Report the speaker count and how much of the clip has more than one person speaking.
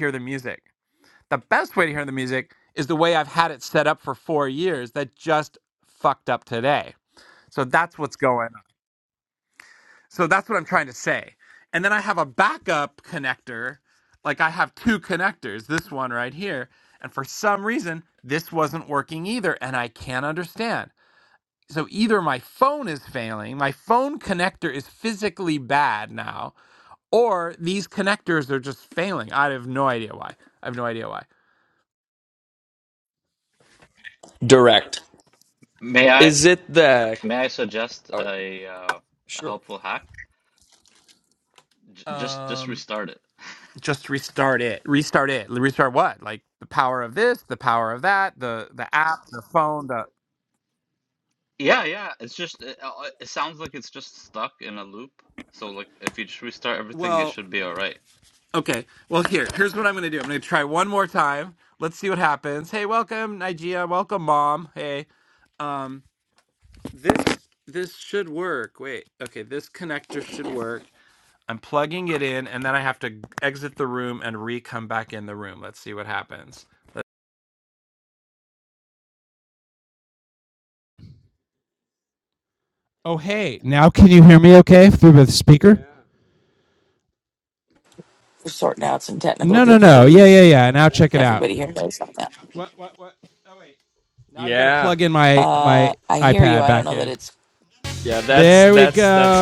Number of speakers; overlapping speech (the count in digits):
4, about 6%